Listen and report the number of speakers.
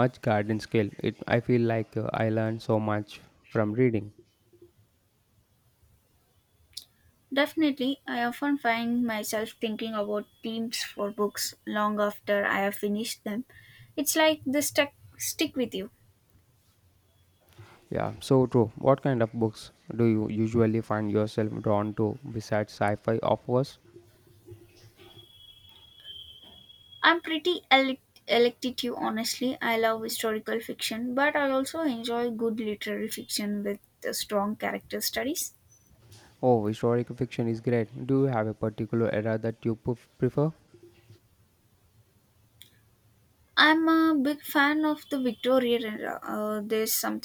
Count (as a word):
two